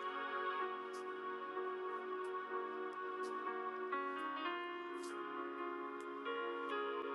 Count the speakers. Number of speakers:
zero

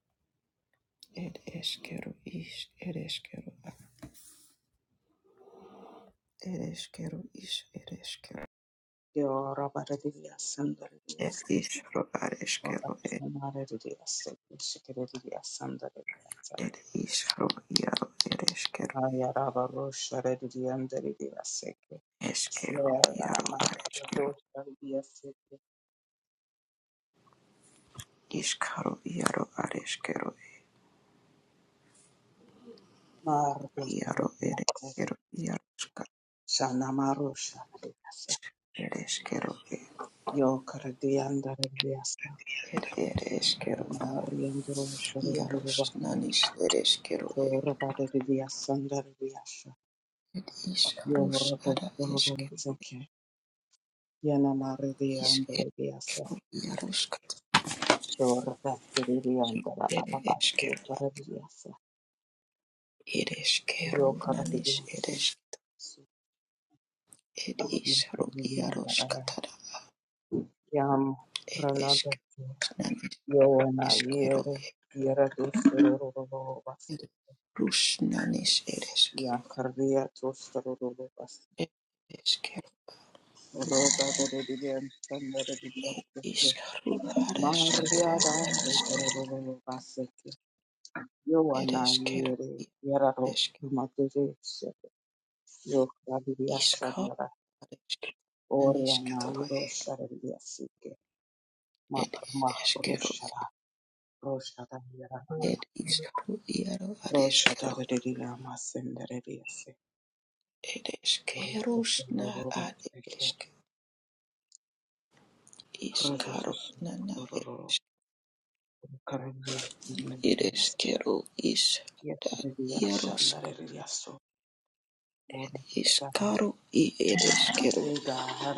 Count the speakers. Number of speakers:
two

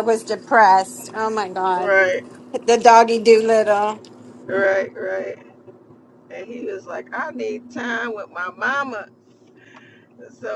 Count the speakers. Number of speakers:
two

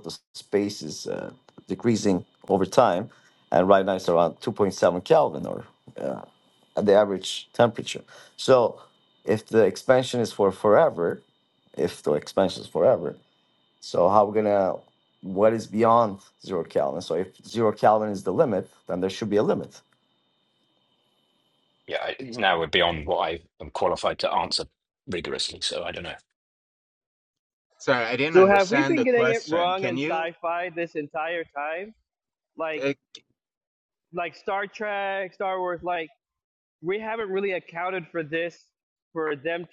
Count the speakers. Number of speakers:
four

